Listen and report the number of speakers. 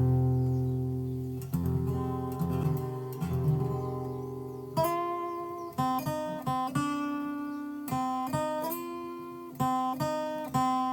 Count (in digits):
0